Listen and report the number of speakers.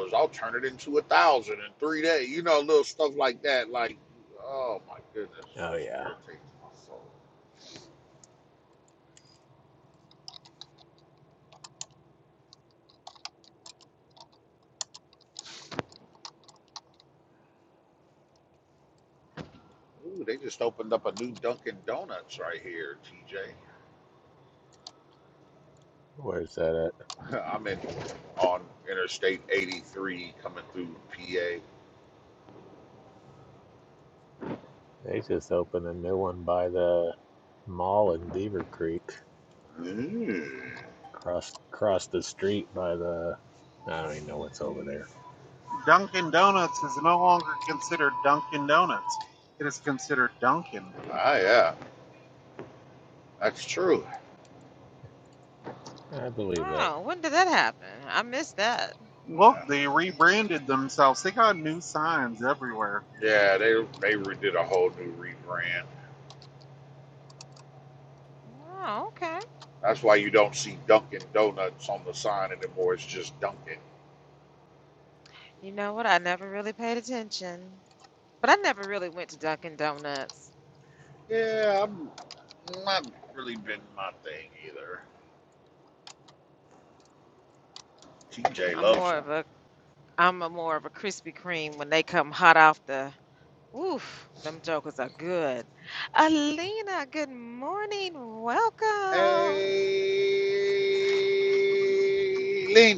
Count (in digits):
4